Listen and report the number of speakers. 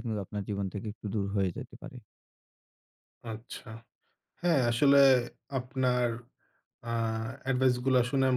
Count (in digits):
2